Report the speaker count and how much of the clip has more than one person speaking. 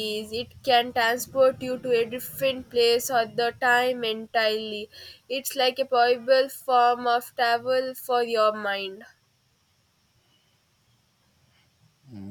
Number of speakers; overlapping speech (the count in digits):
1, no overlap